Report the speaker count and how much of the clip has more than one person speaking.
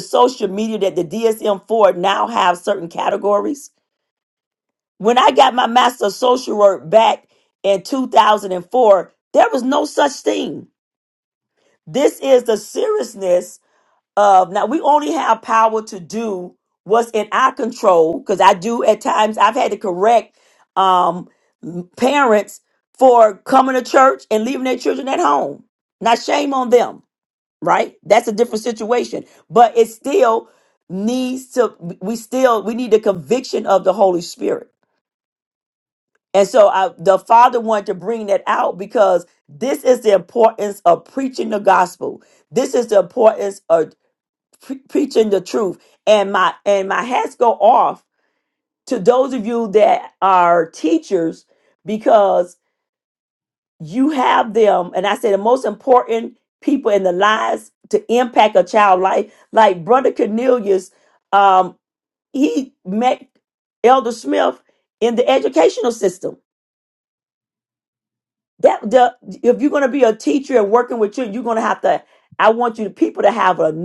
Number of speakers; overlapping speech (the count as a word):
one, no overlap